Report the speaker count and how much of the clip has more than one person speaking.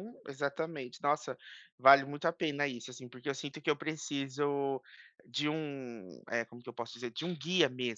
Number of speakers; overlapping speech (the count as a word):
one, no overlap